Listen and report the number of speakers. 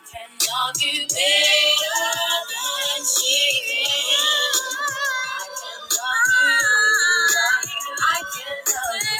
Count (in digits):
1